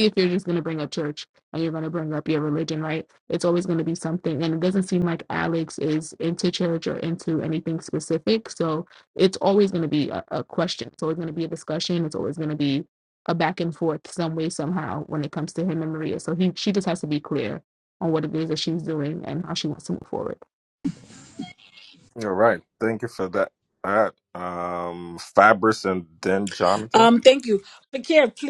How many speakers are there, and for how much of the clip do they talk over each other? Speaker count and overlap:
three, under 1%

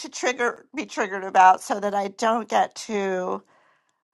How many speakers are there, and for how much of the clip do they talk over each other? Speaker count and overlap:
one, no overlap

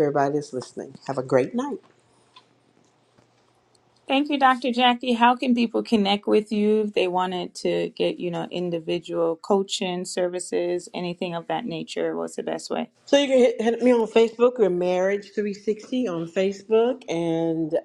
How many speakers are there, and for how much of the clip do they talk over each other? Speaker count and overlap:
two, no overlap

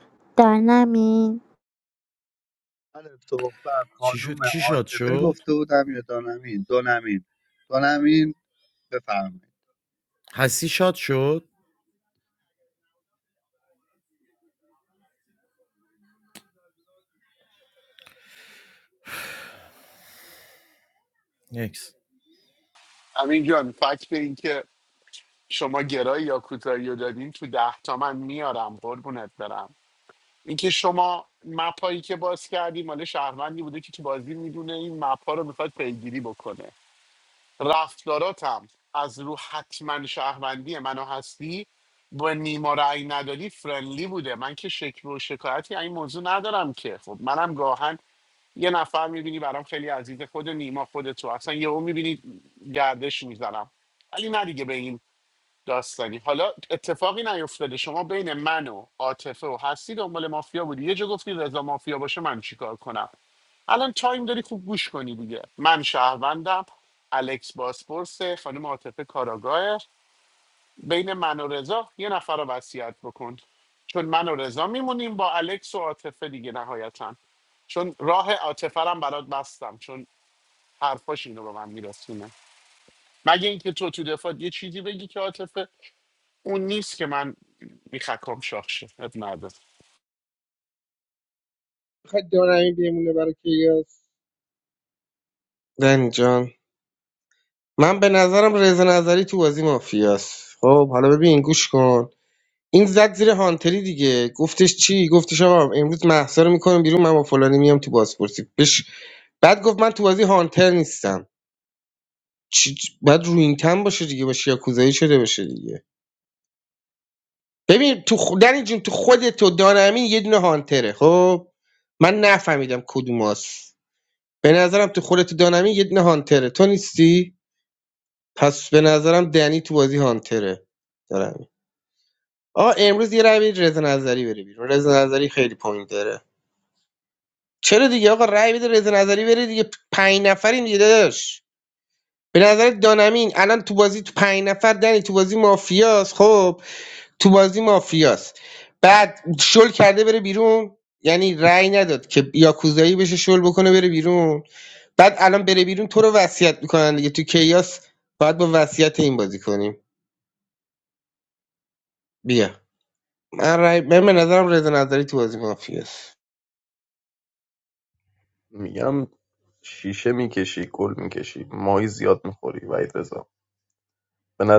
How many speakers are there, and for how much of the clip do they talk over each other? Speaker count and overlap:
six, about 1%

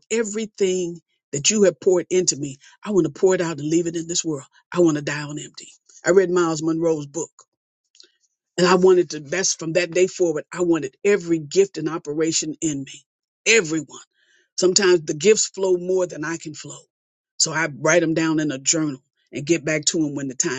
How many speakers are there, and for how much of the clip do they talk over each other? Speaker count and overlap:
one, no overlap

